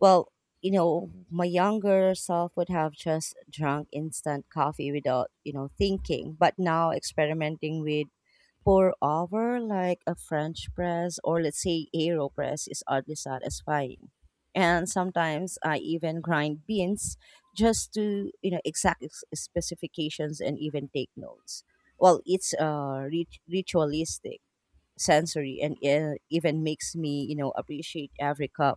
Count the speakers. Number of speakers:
1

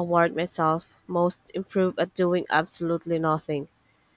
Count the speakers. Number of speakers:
1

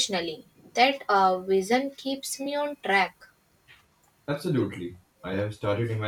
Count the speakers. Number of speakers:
2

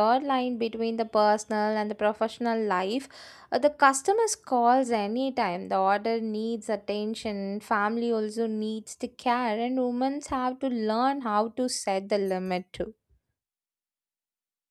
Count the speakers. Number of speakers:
1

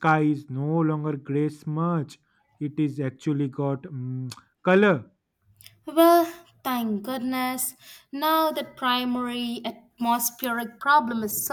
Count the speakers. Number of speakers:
2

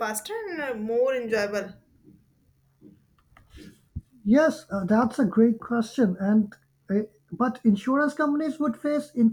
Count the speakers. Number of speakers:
2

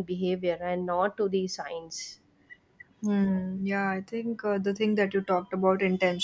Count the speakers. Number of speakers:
2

